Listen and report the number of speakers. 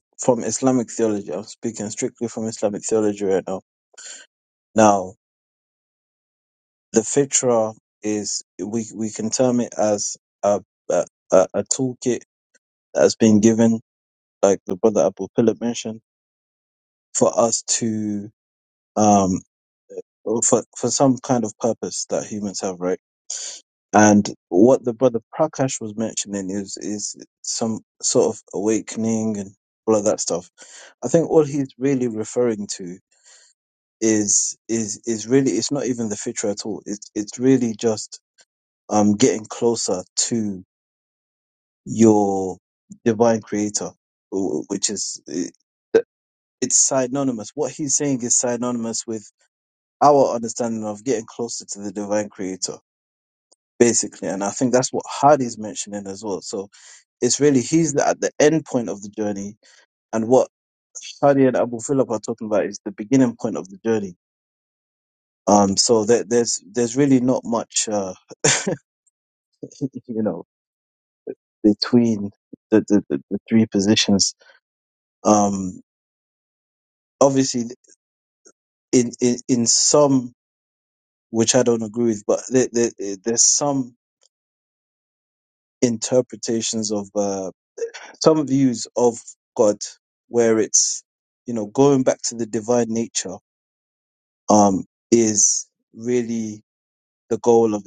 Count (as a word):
one